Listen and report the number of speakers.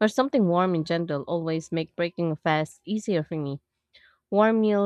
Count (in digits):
1